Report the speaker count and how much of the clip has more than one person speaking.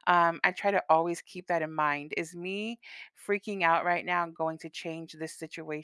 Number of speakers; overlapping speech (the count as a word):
one, no overlap